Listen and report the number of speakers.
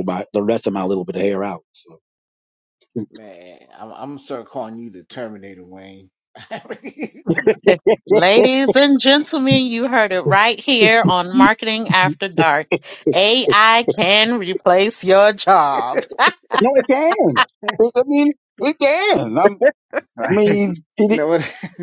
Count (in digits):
3